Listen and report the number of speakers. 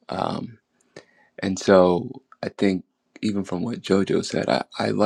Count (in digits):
1